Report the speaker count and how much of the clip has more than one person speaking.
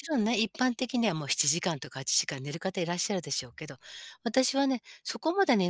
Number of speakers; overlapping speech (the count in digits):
1, no overlap